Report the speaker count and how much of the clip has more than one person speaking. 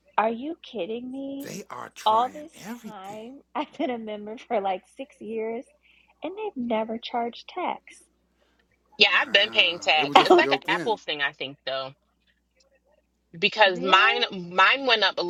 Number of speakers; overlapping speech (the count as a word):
three, about 21%